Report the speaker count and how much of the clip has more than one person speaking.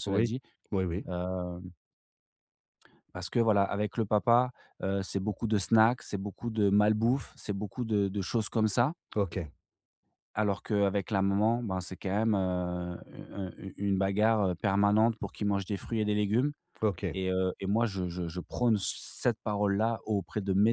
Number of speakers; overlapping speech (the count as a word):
two, about 1%